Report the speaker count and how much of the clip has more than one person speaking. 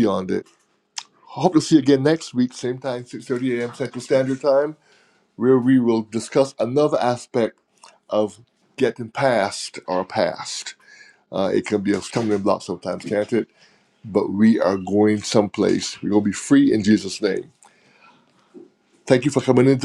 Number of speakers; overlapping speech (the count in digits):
1, no overlap